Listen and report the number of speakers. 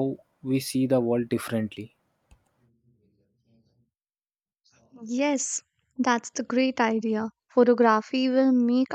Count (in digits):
2